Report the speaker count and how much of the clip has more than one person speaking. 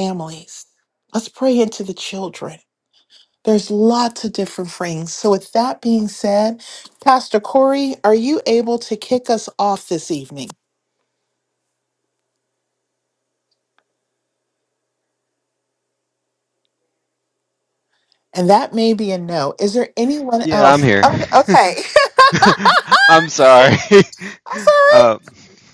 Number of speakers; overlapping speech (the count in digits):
2, about 3%